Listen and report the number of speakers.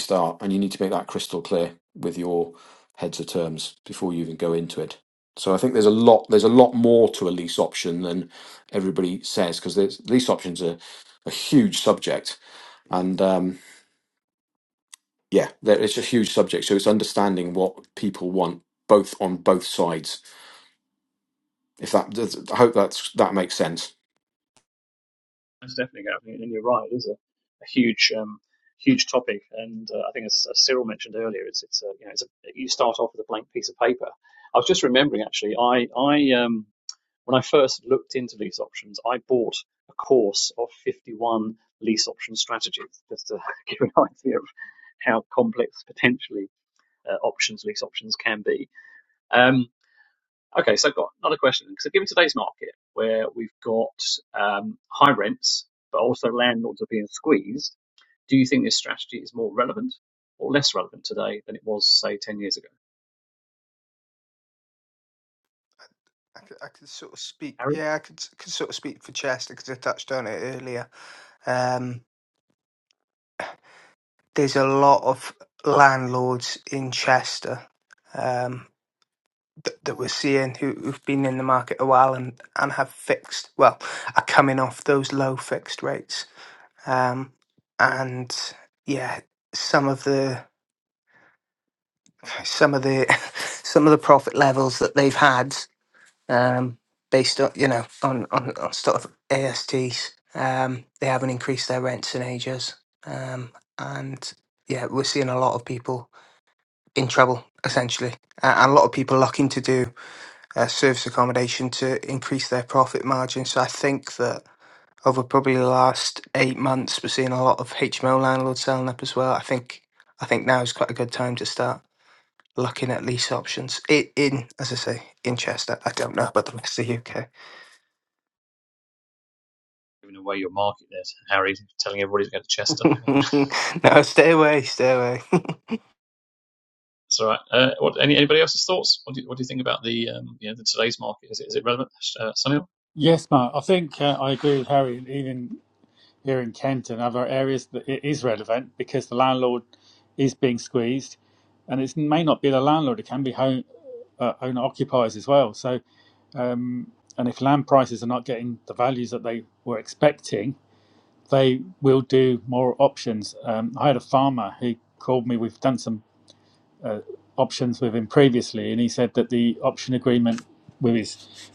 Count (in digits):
4